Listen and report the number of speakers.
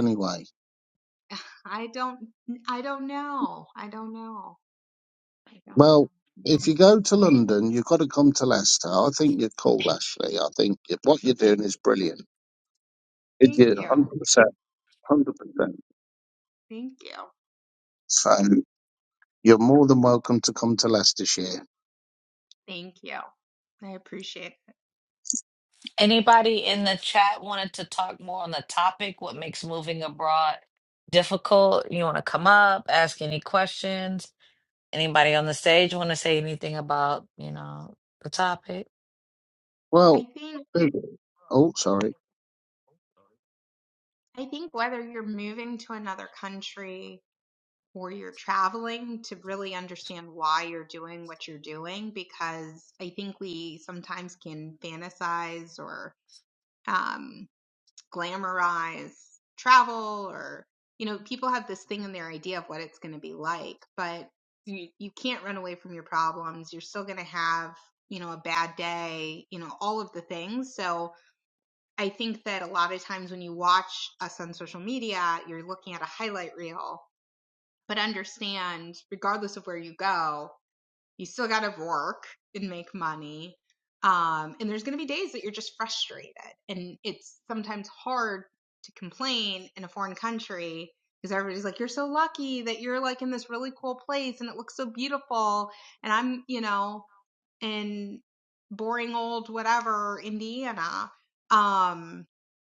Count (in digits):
3